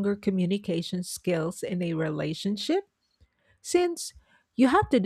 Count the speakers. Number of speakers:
one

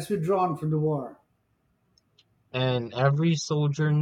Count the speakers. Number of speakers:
two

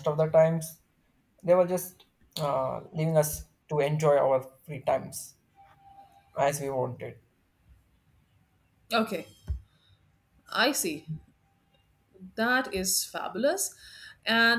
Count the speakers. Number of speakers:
two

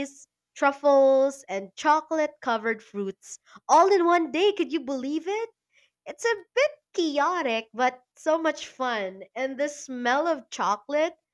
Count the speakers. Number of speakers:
one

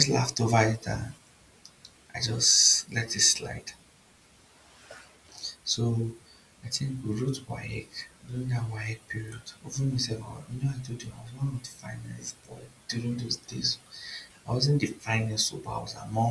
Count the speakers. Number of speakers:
one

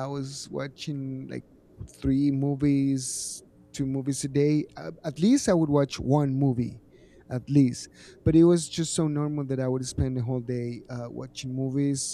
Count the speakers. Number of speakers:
one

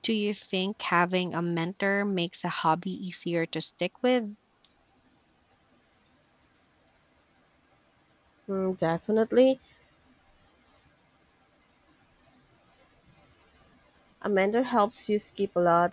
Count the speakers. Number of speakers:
two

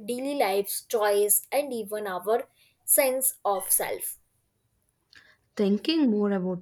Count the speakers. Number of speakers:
two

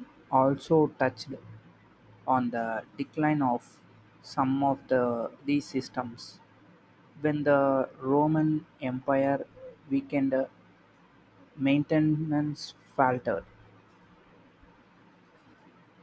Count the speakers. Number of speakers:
one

